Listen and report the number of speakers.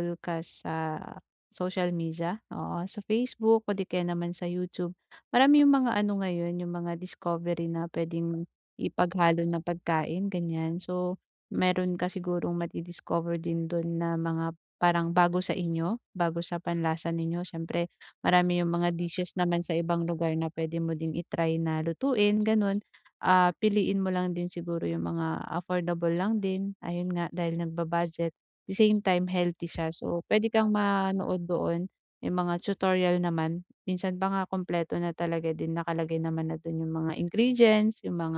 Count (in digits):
1